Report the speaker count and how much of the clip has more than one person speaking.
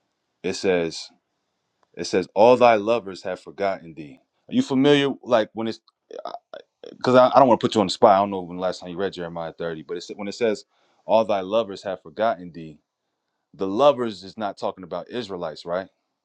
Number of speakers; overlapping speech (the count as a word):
one, no overlap